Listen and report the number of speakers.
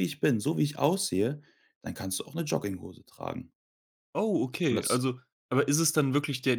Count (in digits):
2